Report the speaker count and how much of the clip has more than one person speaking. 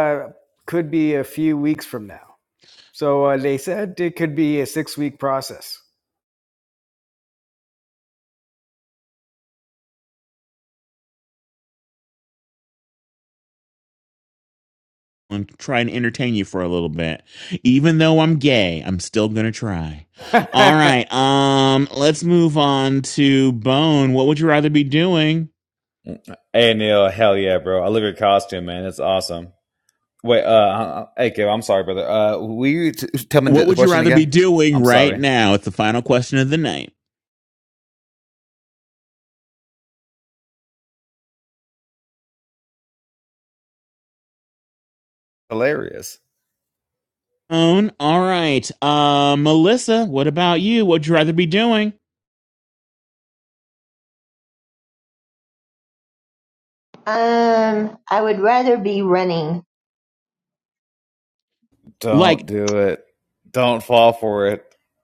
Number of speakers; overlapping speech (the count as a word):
four, about 2%